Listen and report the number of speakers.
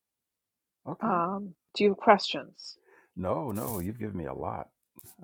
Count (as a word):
two